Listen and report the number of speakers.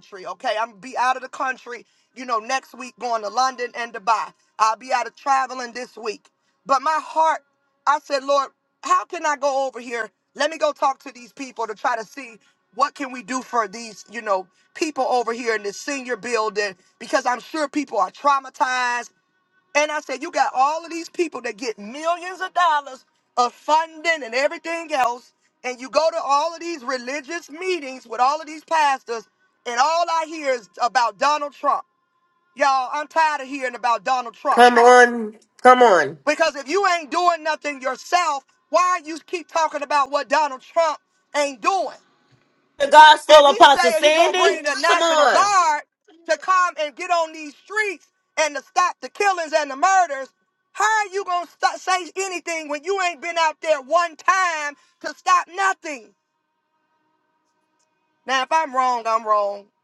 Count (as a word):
two